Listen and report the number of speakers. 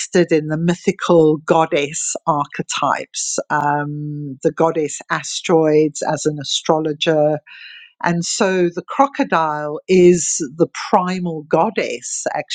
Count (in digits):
1